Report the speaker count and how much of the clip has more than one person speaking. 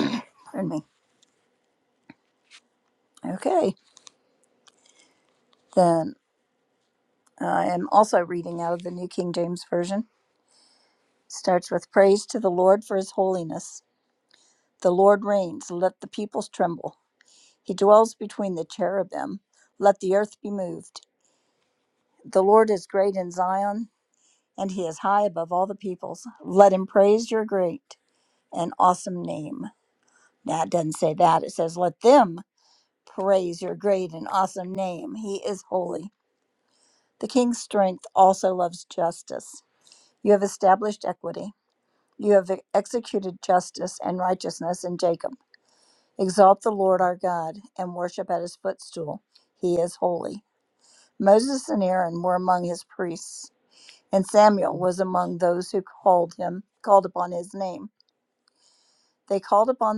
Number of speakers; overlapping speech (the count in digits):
1, no overlap